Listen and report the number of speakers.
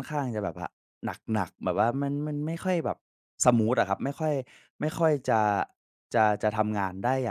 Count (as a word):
one